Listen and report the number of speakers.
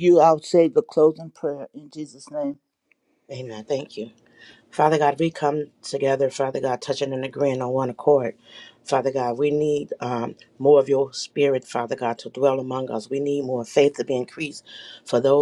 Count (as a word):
two